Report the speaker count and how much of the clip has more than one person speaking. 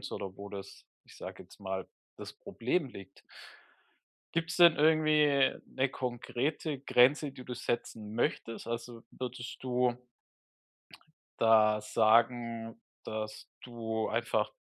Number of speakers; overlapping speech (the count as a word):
one, no overlap